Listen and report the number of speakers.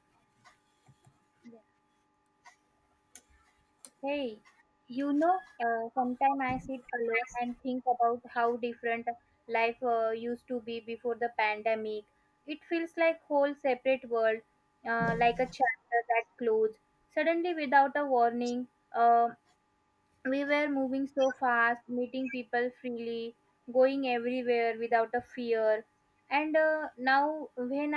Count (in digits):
1